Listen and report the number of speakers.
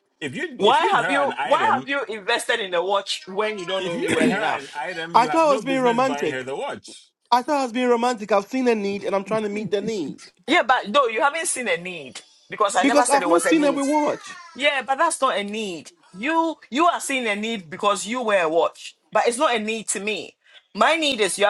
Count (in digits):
3